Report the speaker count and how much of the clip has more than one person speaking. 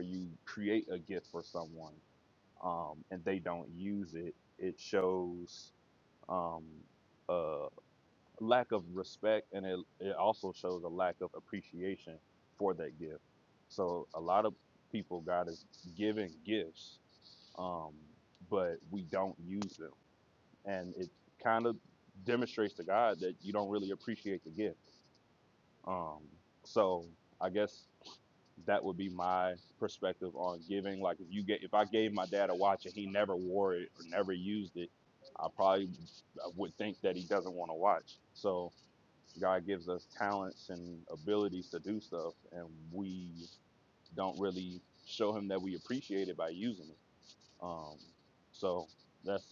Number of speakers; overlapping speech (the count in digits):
1, no overlap